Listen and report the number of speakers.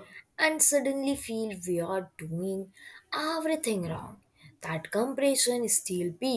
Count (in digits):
1